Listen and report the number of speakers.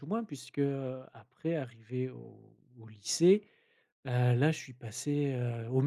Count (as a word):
one